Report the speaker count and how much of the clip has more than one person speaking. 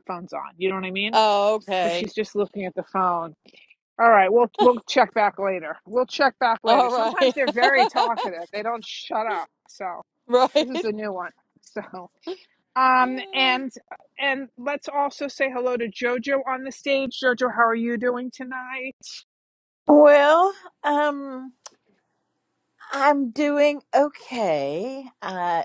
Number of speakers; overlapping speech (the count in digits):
3, about 5%